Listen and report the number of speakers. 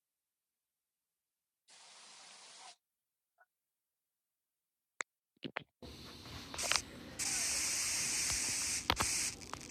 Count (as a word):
zero